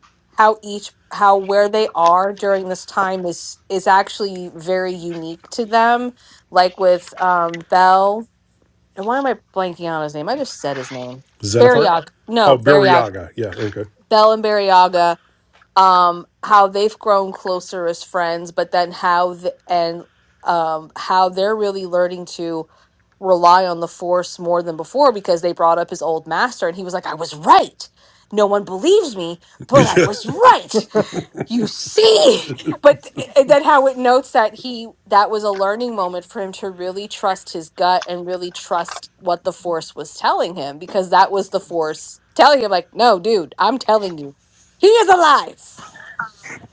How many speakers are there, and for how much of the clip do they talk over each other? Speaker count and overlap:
two, about 2%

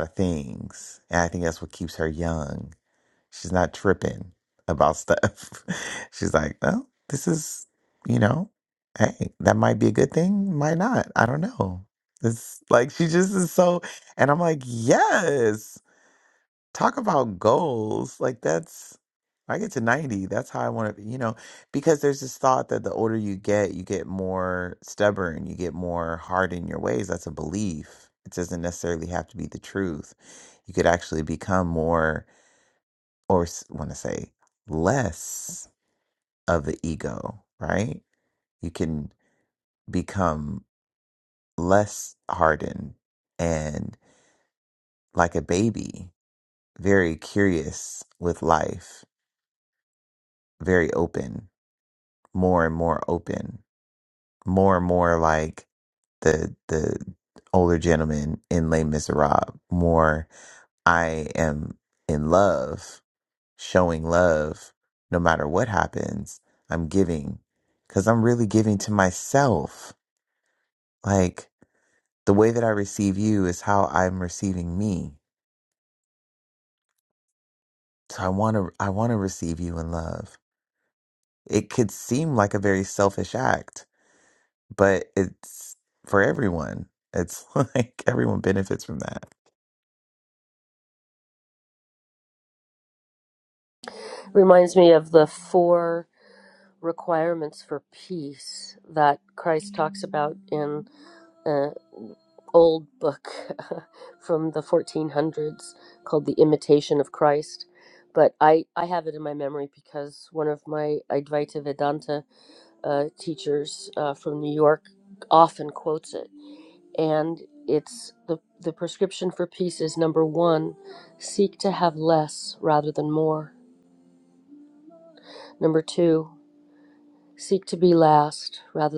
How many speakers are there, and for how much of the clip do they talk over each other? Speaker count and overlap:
two, no overlap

